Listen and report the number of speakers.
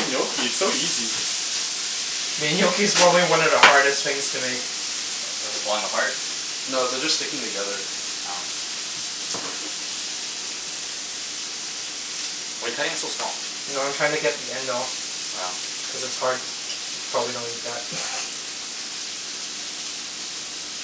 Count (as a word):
four